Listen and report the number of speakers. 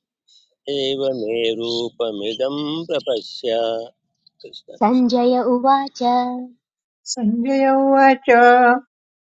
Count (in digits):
3